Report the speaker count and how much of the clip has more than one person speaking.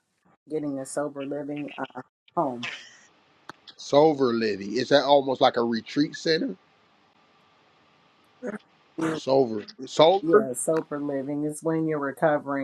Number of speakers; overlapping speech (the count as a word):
two, about 2%